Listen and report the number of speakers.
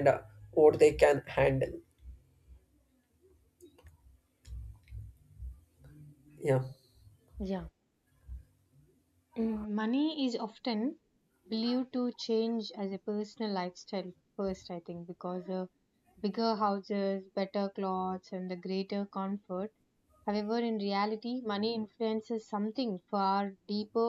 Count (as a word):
two